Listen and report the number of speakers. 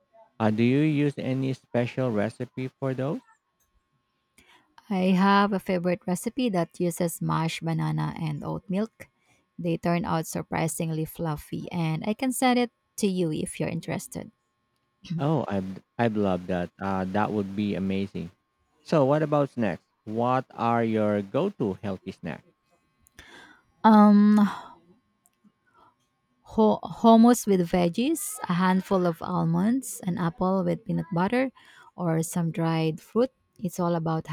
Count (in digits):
2